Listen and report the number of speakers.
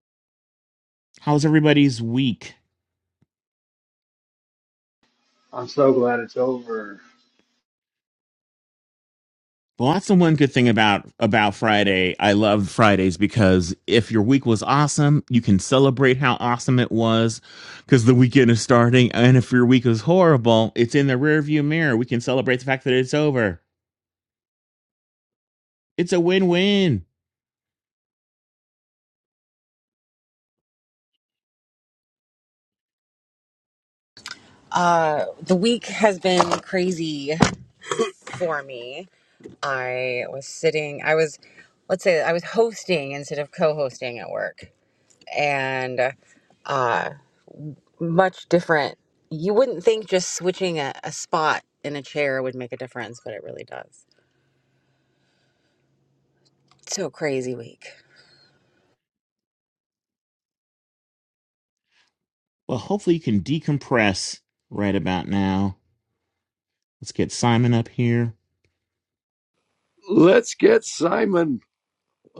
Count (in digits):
4